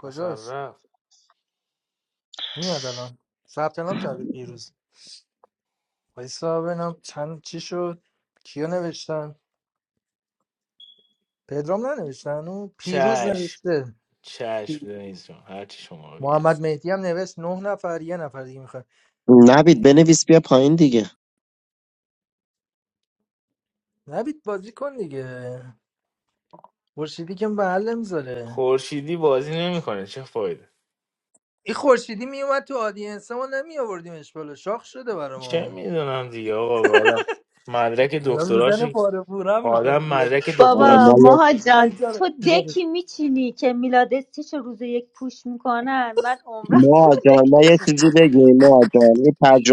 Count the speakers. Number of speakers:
4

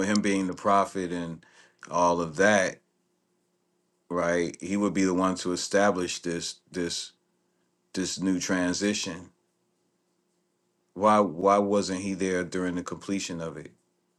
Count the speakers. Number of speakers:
1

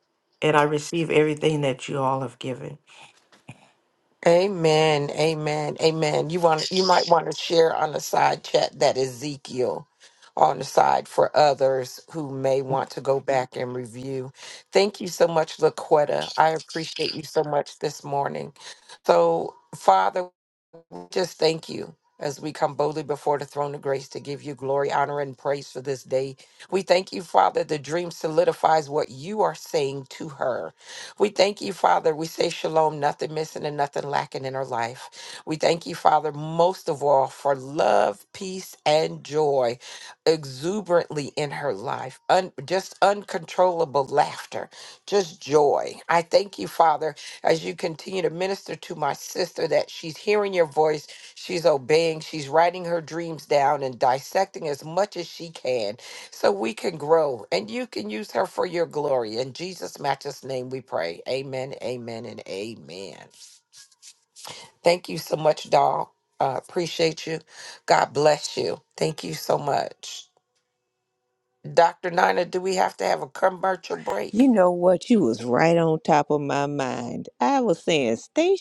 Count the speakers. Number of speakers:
3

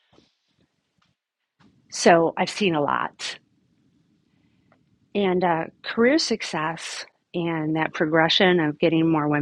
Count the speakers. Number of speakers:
1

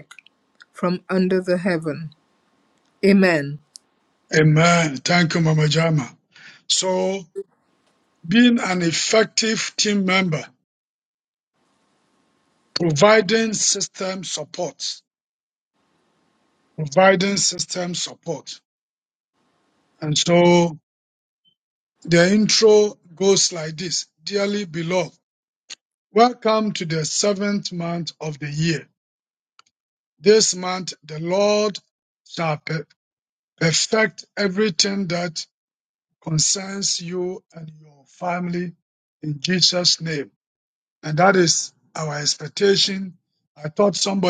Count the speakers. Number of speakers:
2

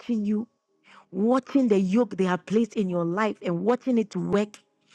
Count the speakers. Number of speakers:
1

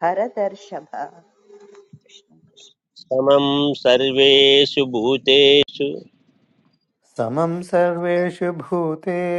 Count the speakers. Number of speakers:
3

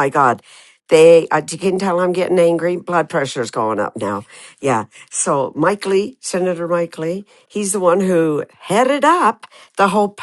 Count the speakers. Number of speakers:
1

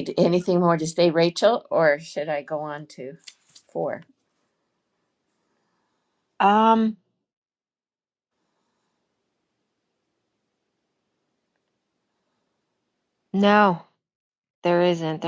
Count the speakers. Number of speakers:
2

